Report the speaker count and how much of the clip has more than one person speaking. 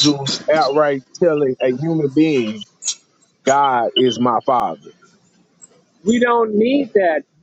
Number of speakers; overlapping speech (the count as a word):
two, no overlap